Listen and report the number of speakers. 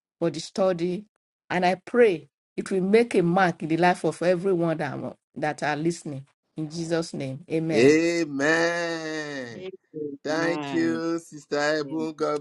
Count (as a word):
three